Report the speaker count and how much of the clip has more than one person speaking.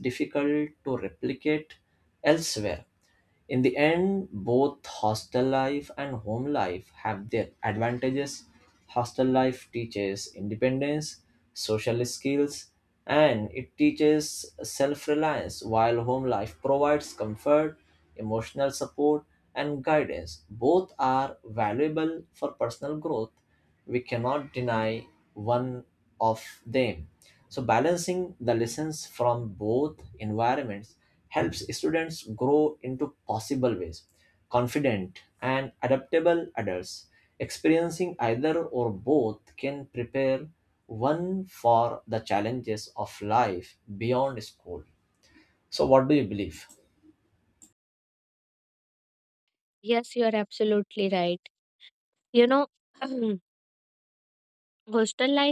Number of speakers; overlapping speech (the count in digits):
2, no overlap